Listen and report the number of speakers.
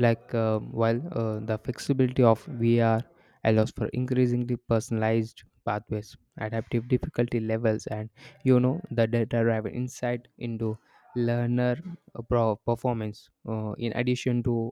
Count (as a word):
one